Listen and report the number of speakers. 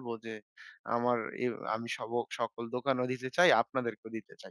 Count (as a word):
one